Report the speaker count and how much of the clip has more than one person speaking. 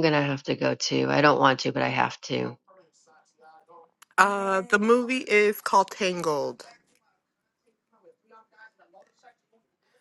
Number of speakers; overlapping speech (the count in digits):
2, no overlap